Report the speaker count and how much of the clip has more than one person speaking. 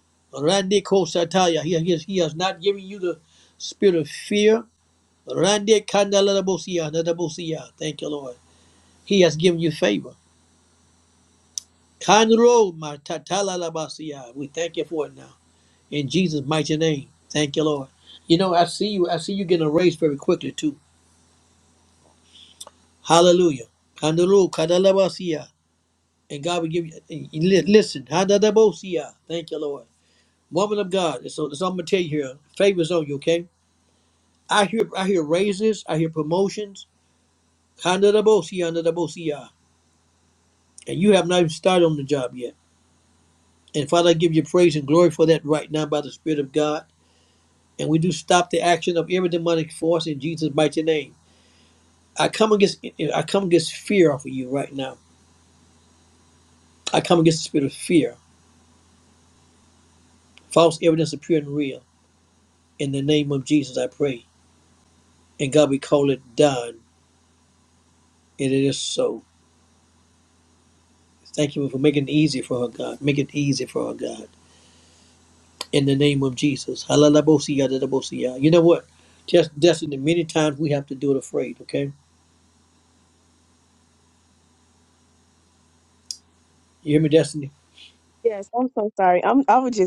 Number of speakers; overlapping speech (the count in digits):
2, no overlap